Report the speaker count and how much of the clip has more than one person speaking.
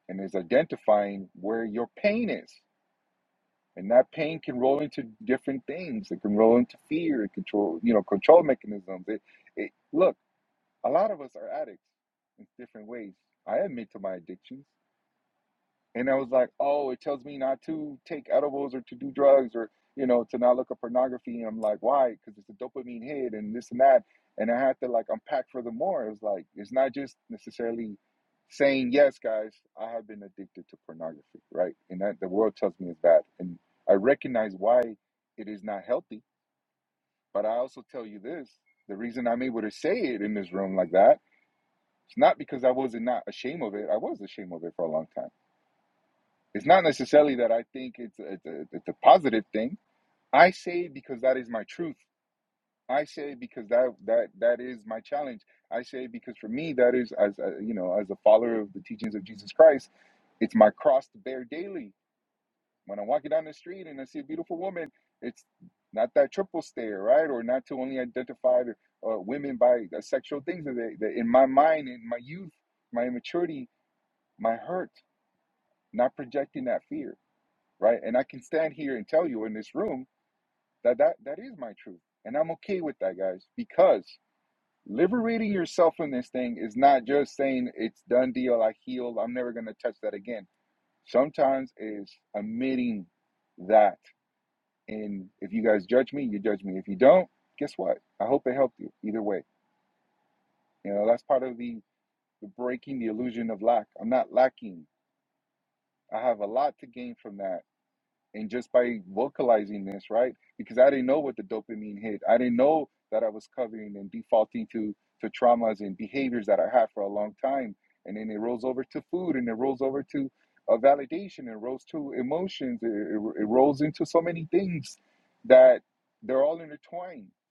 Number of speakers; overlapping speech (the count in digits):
1, no overlap